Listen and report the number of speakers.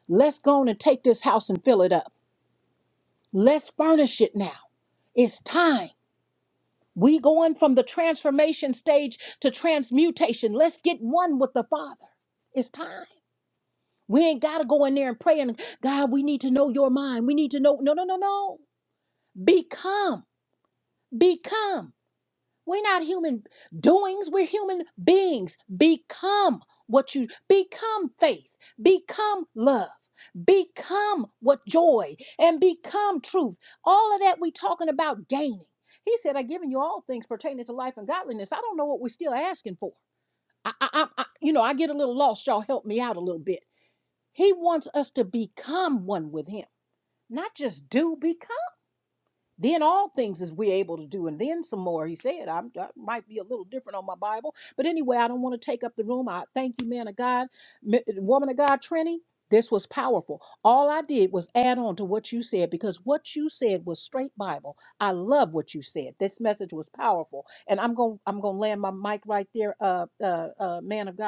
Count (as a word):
one